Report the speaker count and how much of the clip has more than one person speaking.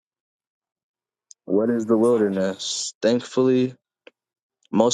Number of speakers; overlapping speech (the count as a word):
one, no overlap